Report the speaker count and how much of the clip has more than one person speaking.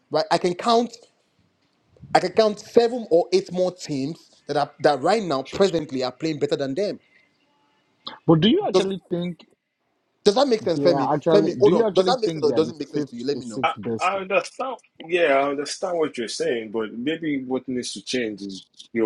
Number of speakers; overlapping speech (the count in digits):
3, about 19%